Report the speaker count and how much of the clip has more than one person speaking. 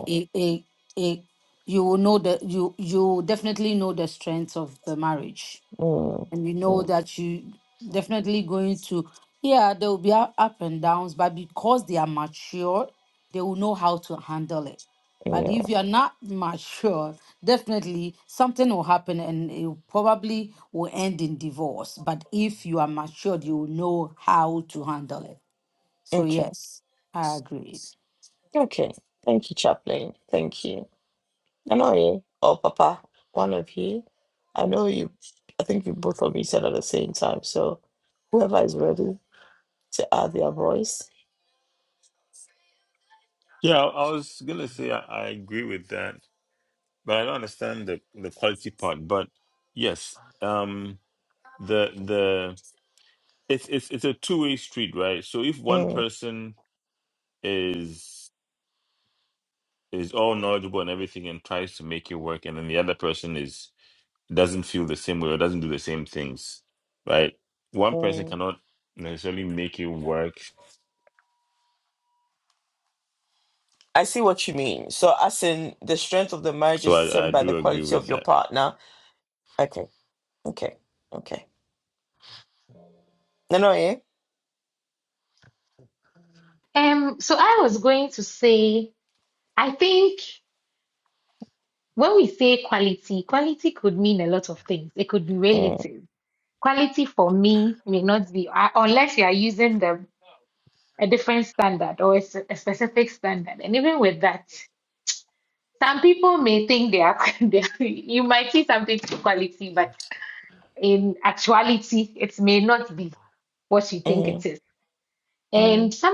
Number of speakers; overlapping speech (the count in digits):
4, about 4%